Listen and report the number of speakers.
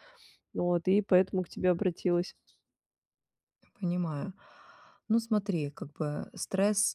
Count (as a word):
two